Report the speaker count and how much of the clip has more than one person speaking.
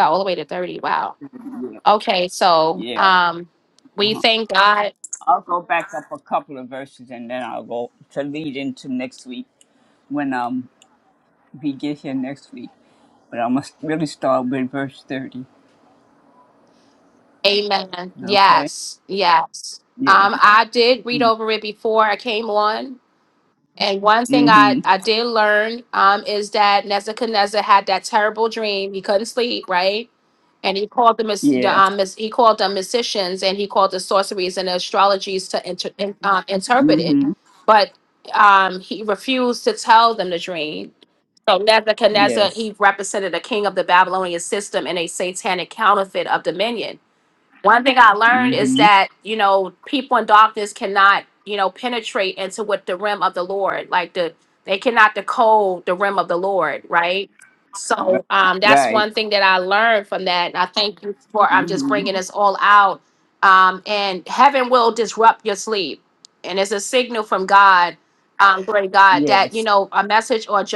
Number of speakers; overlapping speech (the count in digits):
2, about 8%